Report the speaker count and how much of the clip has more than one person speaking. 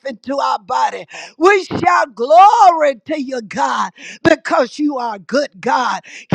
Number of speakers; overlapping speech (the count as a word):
one, no overlap